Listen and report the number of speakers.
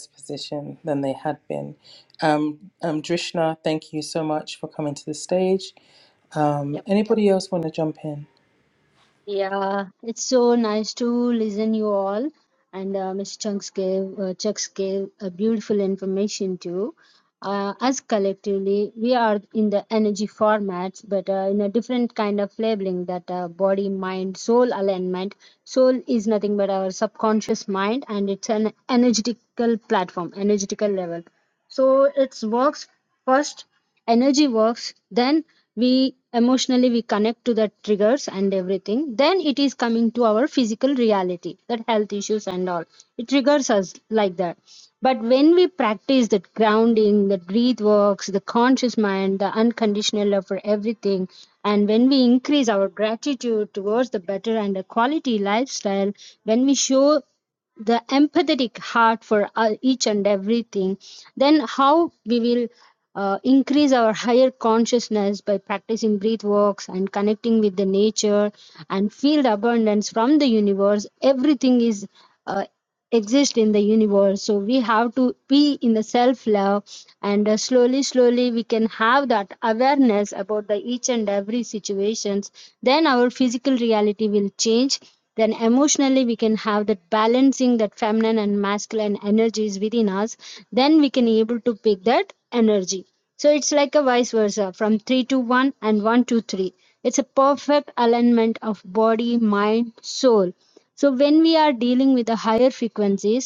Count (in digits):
2